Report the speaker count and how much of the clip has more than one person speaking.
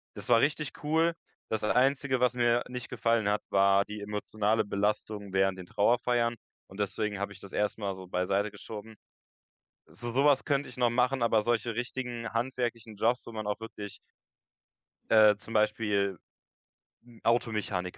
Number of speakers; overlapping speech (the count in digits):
1, no overlap